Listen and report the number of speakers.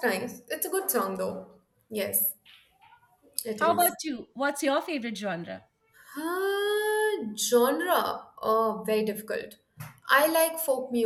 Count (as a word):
two